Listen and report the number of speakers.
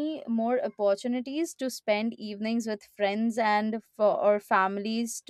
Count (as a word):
one